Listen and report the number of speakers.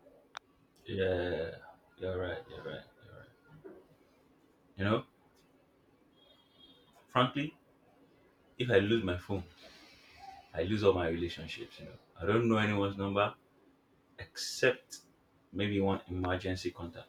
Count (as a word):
one